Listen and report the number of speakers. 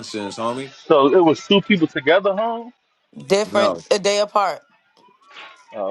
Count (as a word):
three